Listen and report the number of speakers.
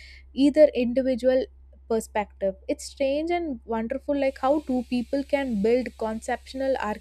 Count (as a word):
one